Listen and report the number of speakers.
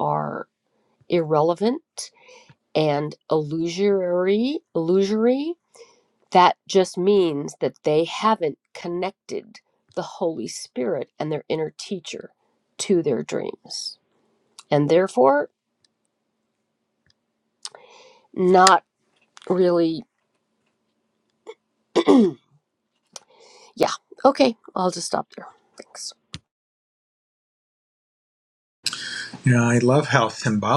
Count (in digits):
2